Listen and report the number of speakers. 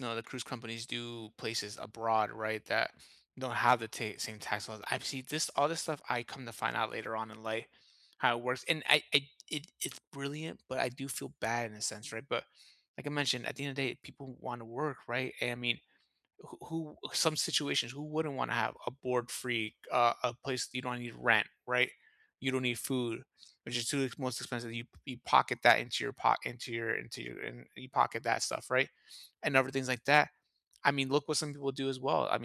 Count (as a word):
one